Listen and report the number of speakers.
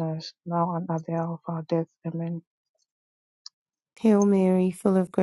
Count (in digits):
2